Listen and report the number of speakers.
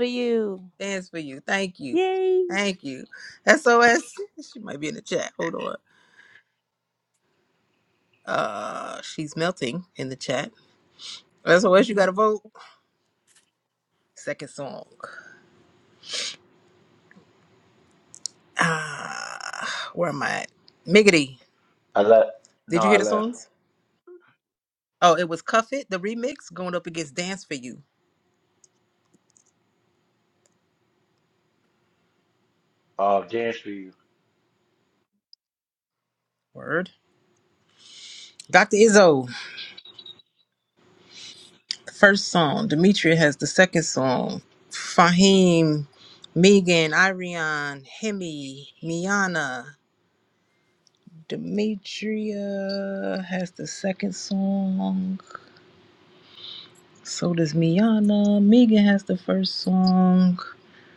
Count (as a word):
three